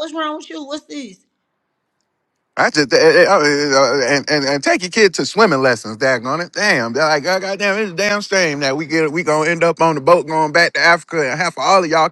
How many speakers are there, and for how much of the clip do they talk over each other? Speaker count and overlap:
2, no overlap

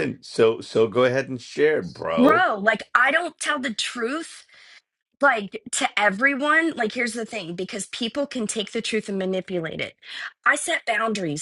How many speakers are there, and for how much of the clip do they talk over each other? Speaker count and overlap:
2, about 2%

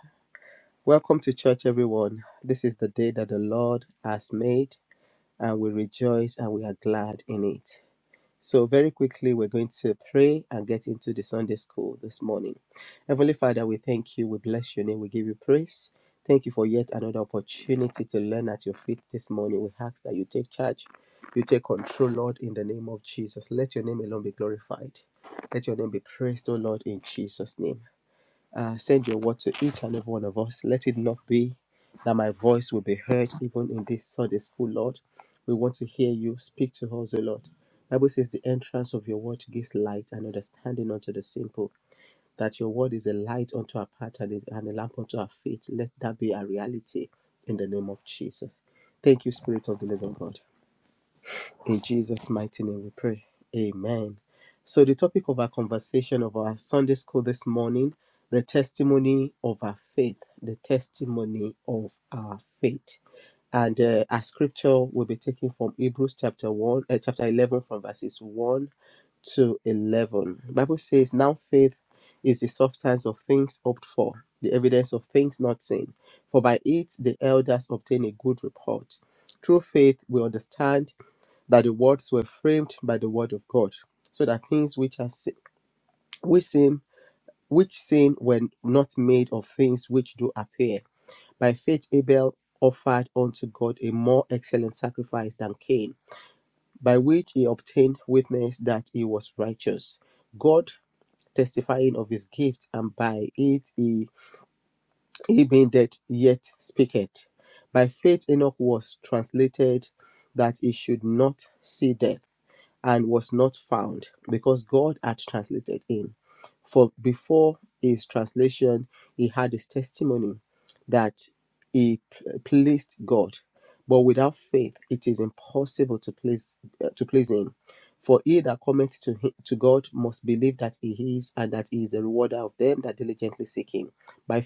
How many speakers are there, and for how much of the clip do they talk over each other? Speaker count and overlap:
1, no overlap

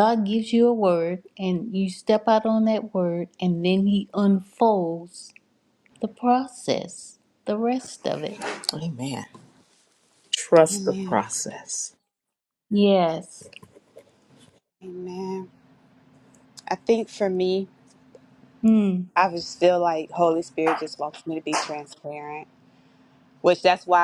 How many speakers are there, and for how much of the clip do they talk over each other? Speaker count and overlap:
3, about 2%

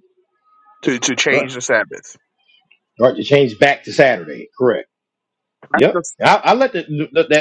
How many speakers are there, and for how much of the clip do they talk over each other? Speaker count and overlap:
2, about 6%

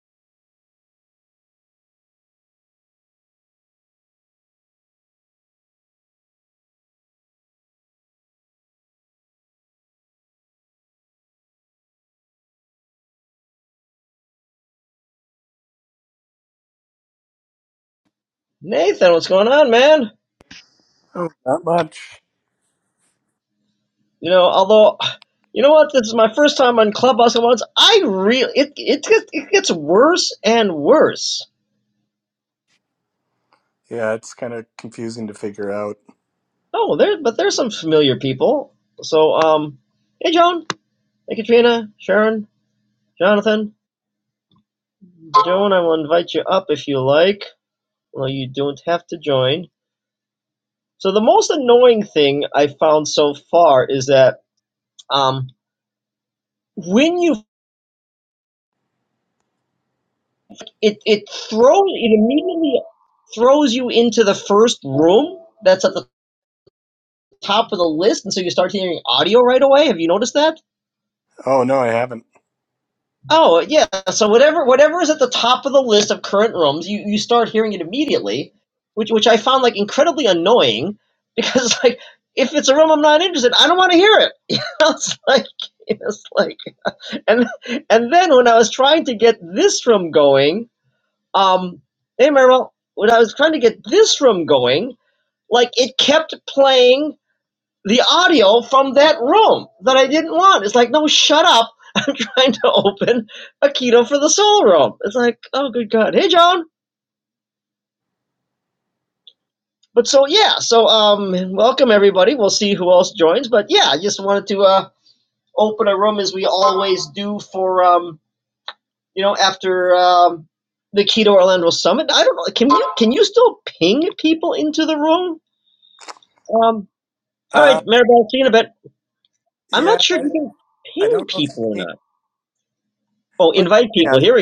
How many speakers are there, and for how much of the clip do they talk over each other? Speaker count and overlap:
2, about 2%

